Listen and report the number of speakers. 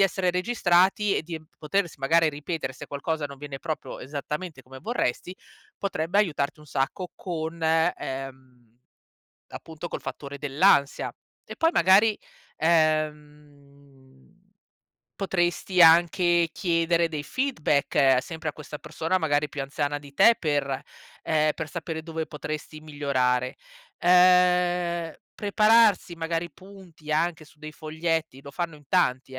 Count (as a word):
one